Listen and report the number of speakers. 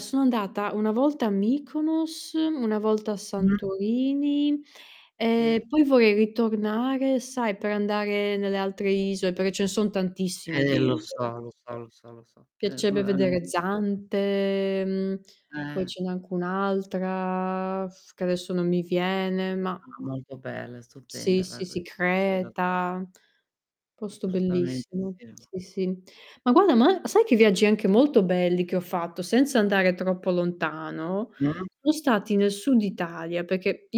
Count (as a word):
two